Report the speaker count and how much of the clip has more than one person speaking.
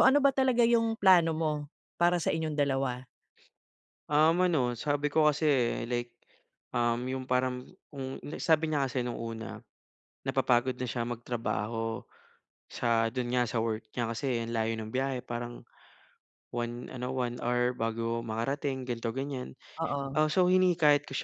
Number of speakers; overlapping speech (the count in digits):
2, under 1%